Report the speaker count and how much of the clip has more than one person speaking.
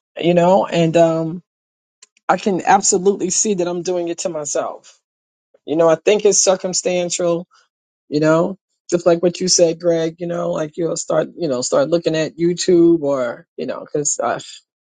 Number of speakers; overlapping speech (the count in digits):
1, no overlap